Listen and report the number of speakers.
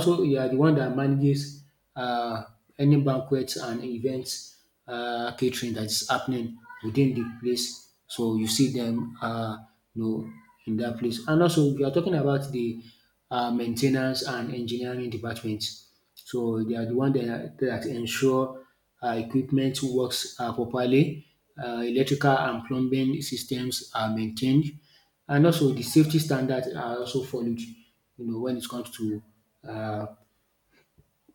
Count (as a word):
one